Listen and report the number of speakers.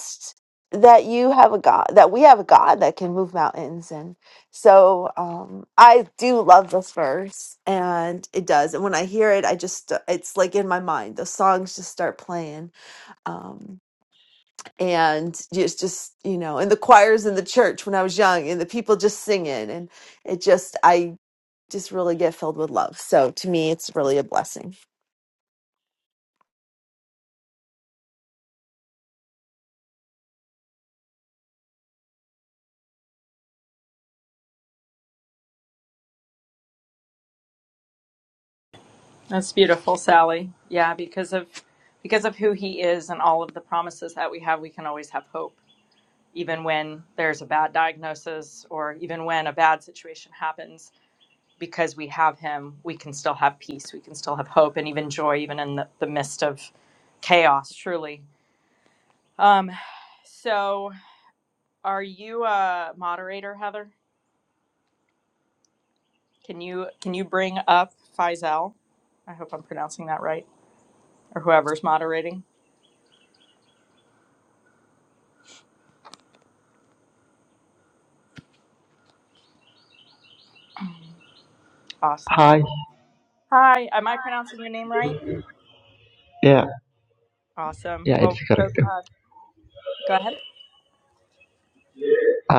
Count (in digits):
3